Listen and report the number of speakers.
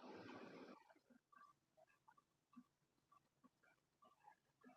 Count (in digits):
0